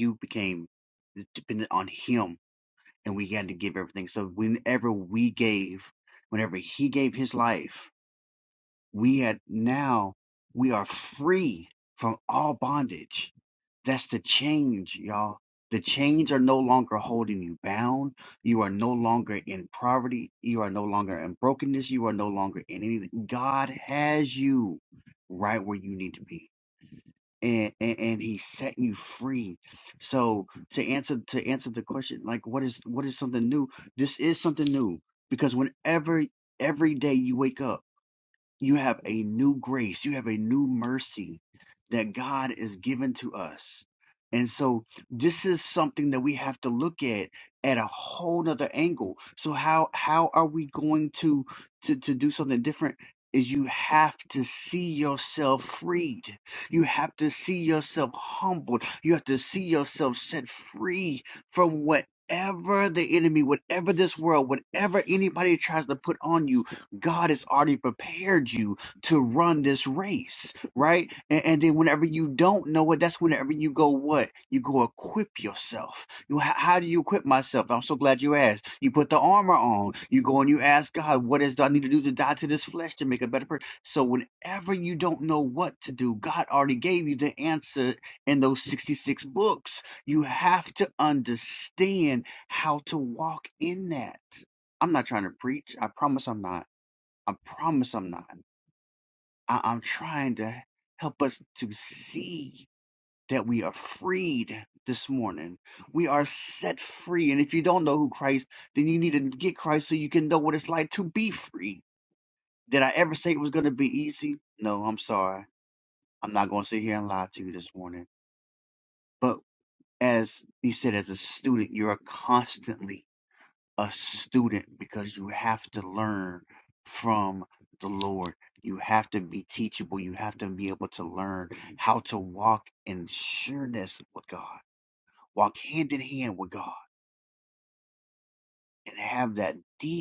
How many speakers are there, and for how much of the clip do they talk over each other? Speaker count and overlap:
1, no overlap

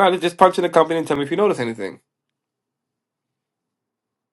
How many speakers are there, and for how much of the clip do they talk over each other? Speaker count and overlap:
1, no overlap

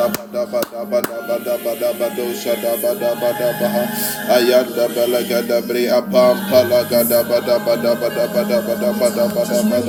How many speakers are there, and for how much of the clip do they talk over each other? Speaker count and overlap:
1, no overlap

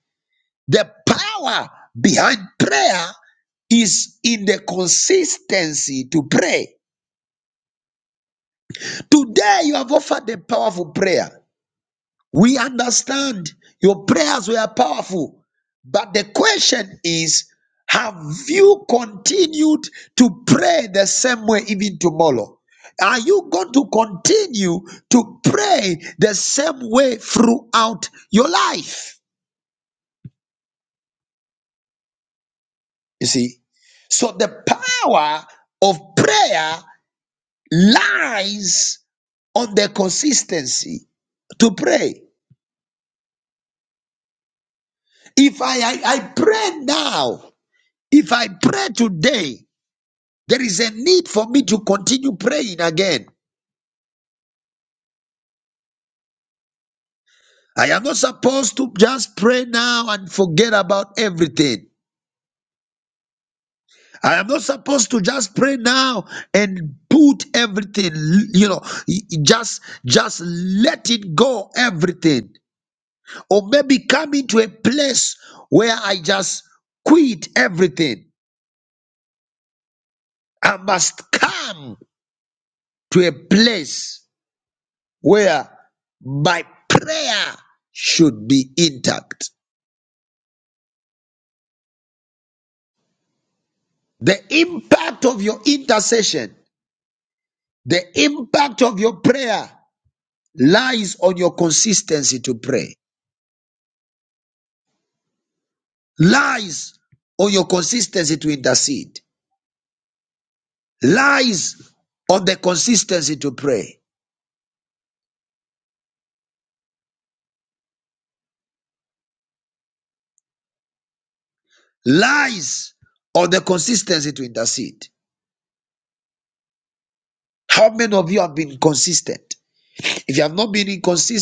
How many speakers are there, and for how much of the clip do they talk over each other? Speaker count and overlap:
1, no overlap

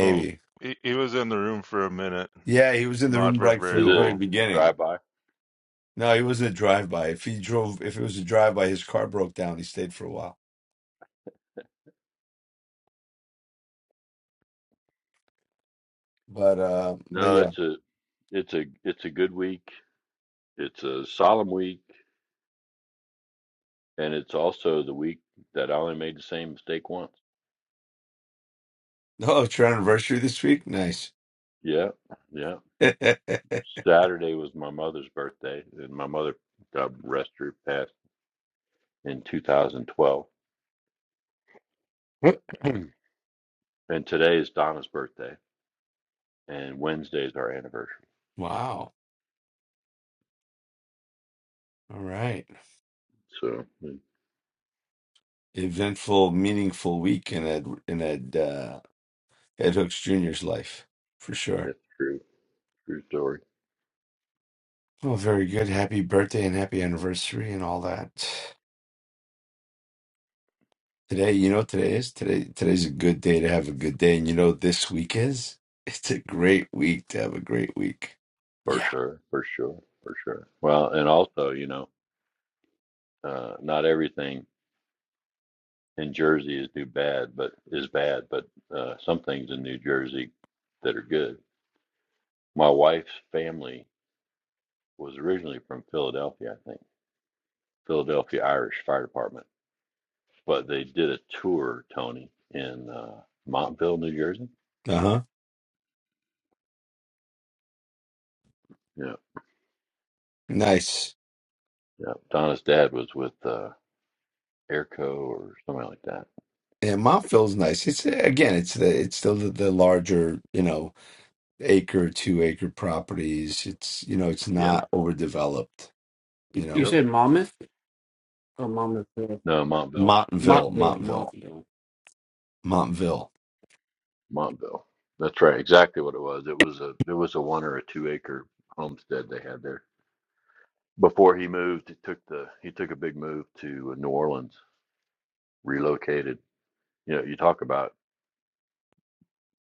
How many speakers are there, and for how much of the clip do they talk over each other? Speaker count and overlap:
4, about 2%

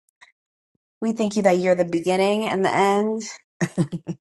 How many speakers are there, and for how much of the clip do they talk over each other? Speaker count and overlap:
1, no overlap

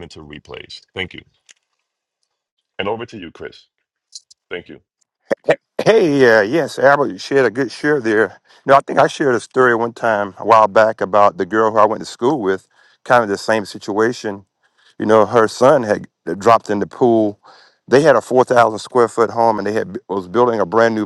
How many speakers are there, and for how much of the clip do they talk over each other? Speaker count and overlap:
2, no overlap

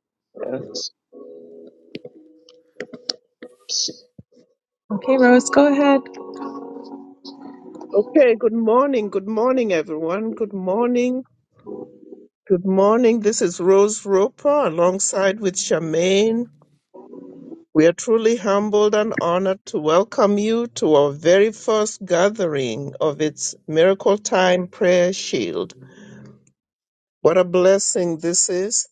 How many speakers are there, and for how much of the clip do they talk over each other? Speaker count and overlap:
2, no overlap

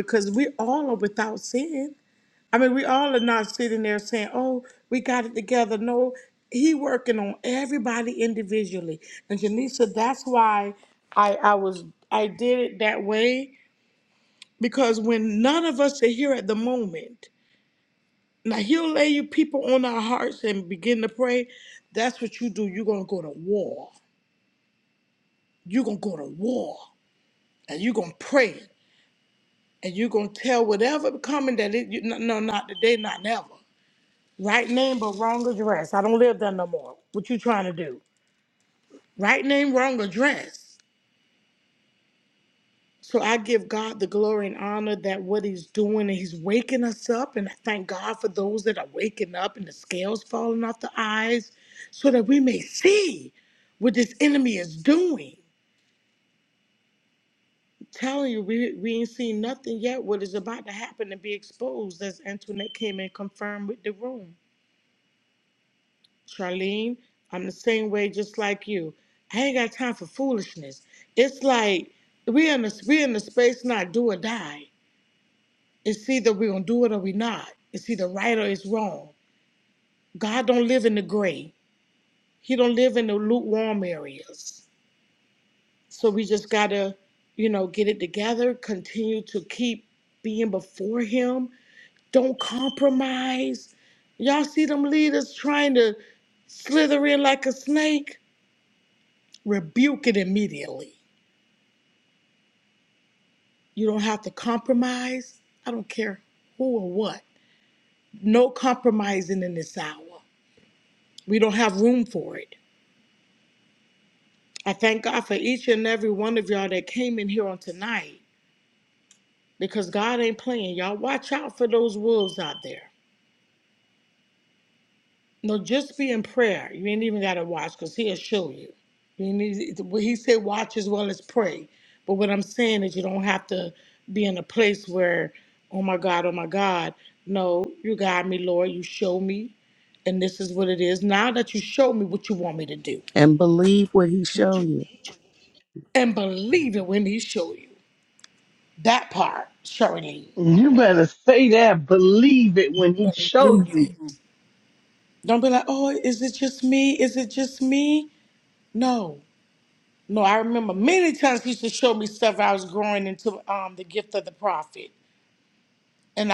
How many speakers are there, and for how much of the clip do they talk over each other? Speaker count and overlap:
3, no overlap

